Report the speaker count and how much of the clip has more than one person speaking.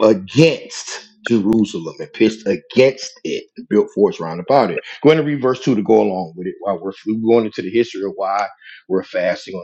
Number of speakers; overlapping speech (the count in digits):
1, no overlap